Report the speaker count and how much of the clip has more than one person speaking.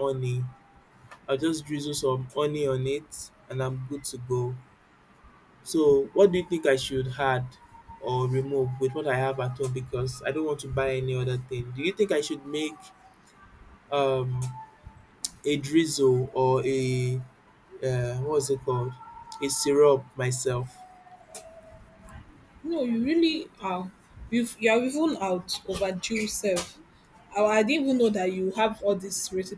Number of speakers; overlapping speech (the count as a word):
two, no overlap